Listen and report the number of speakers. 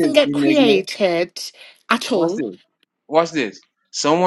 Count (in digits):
2